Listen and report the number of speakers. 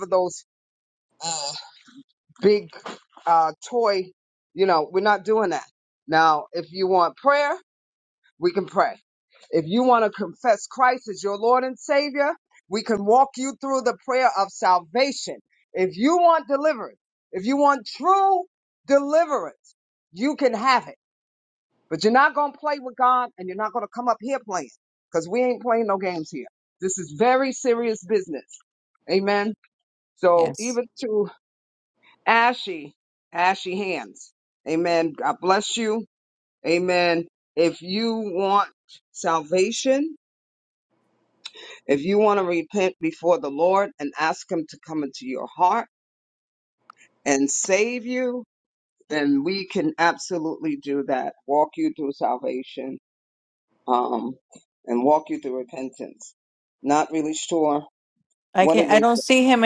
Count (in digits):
2